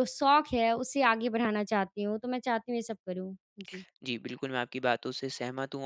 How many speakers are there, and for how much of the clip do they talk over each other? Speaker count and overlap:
2, no overlap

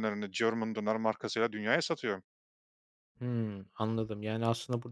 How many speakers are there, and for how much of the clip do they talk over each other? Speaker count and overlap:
2, no overlap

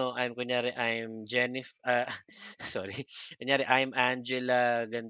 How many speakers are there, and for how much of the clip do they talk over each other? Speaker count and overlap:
1, no overlap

